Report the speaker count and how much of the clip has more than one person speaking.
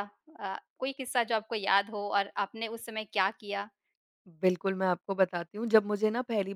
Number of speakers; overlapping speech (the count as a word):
two, no overlap